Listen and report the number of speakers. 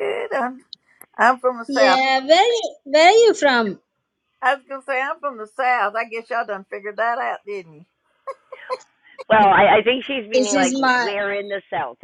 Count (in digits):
3